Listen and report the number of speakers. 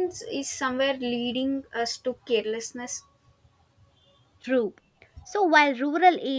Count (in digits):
2